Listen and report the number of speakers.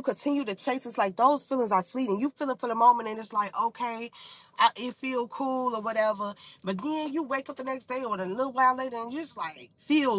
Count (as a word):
one